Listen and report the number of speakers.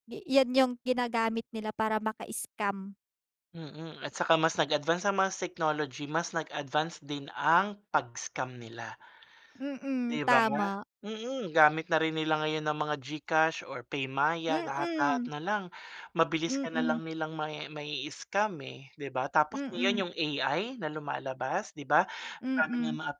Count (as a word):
two